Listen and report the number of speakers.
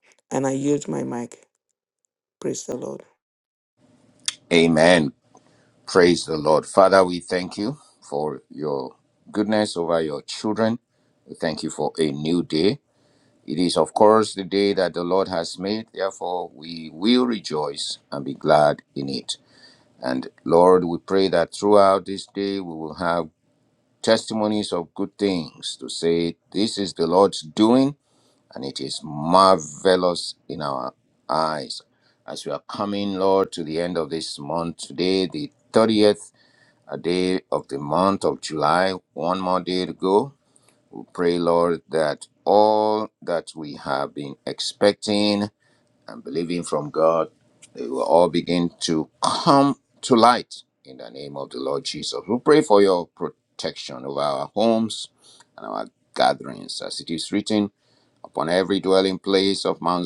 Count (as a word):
two